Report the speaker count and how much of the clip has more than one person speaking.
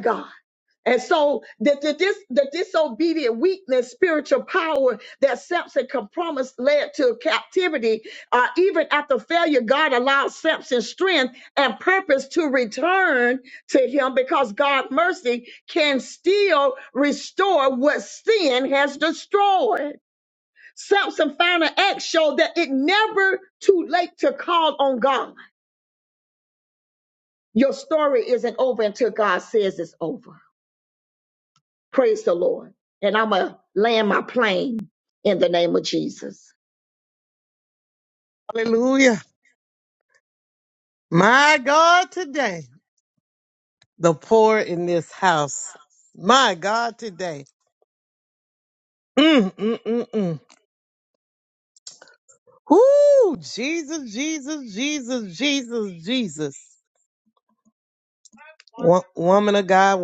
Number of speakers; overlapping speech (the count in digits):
2, no overlap